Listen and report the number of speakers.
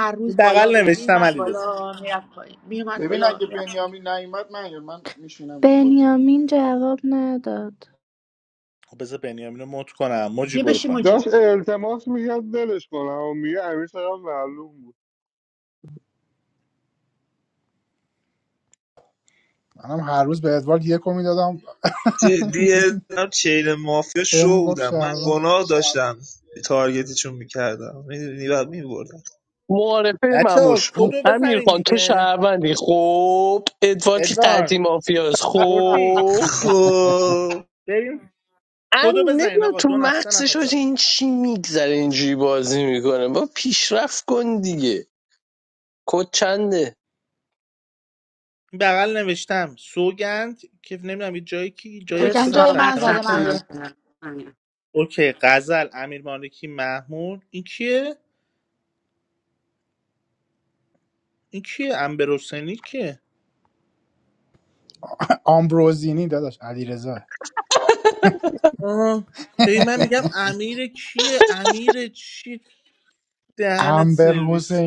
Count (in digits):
9